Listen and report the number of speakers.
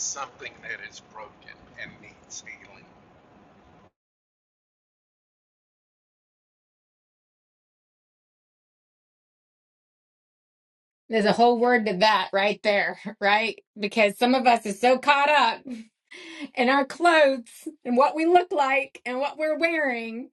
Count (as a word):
two